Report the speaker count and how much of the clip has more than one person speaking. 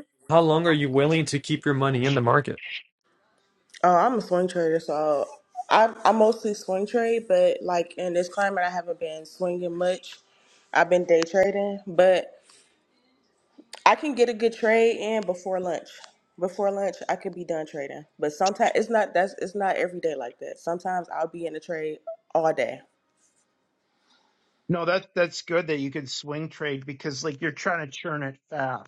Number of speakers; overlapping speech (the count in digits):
3, no overlap